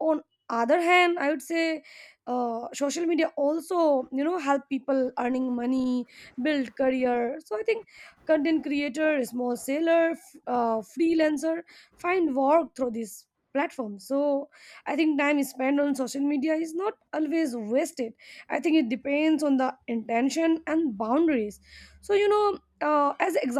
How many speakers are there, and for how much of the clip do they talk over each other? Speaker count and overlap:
one, no overlap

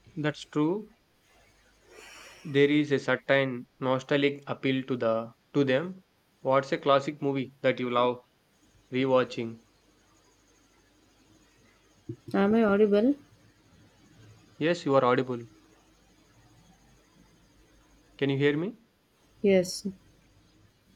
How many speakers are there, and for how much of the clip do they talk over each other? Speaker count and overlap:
two, no overlap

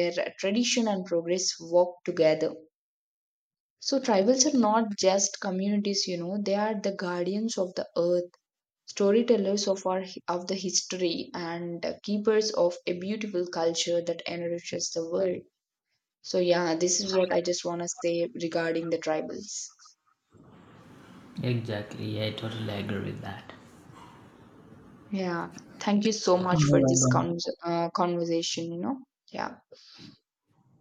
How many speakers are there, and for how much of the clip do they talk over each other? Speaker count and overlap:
two, about 3%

